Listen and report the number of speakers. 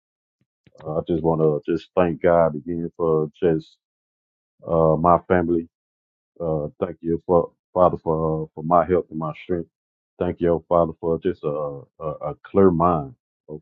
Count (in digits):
1